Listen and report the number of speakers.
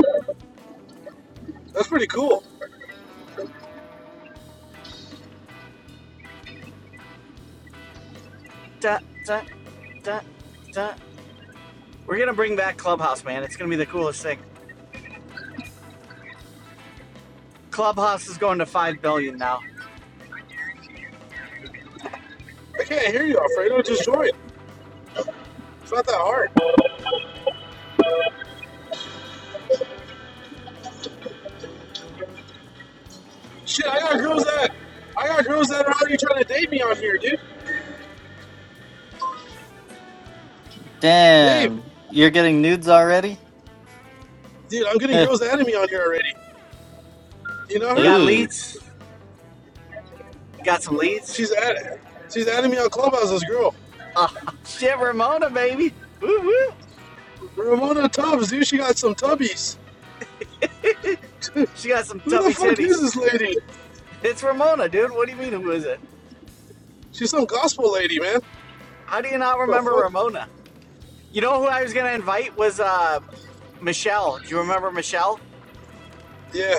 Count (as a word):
three